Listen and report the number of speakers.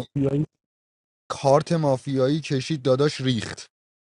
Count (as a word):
one